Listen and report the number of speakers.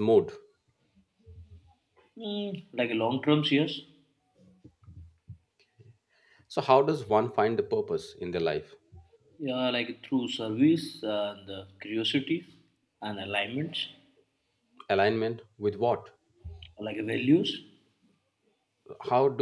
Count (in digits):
2